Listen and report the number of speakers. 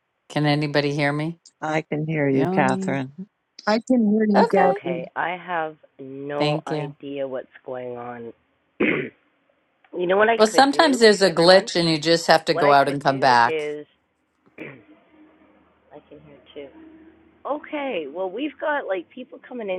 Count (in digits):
4